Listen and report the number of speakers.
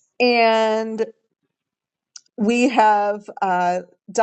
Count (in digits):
1